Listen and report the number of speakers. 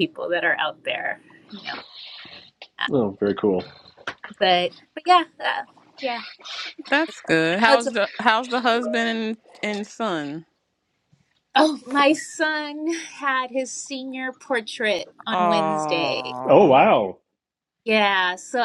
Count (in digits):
3